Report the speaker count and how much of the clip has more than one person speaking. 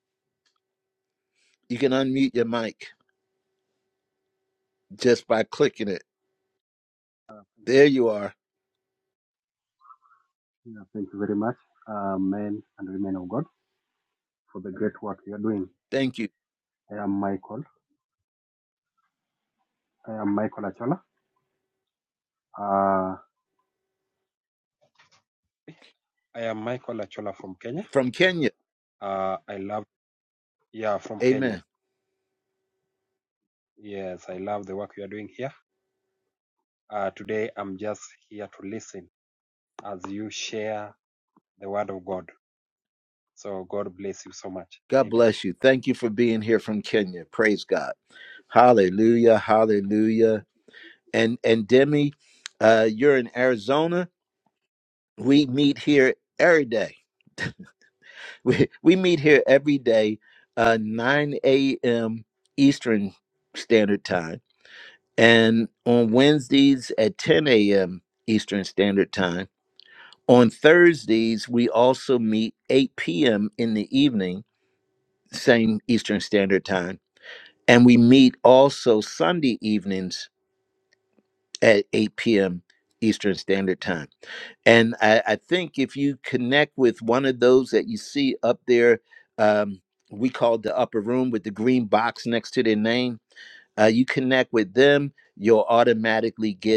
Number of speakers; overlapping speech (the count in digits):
2, about 1%